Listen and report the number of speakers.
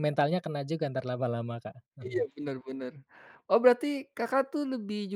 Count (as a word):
two